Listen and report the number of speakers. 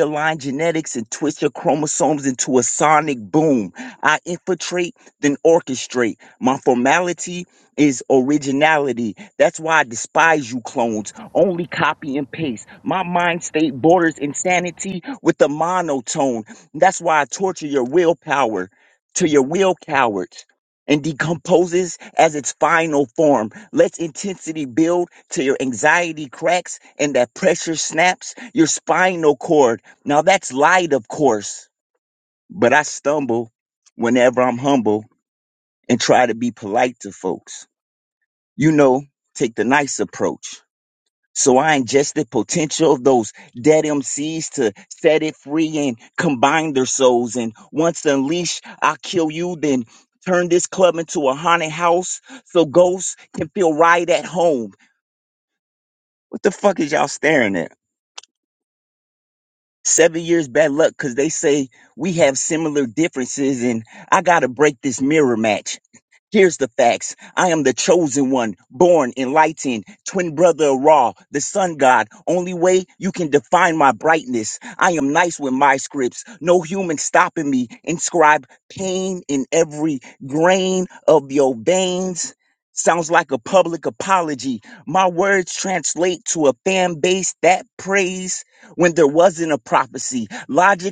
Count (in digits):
1